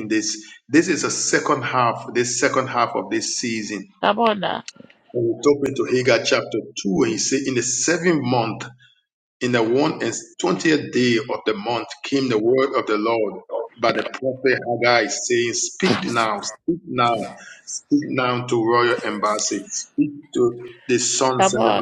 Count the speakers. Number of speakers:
2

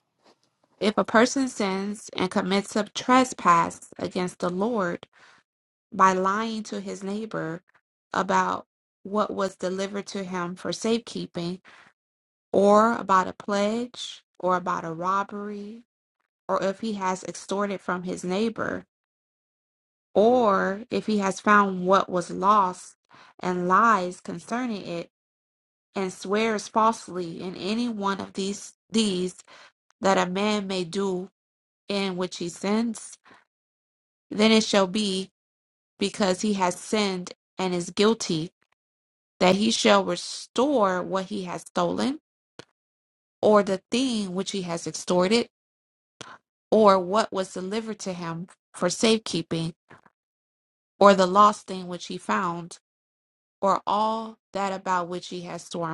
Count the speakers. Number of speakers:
1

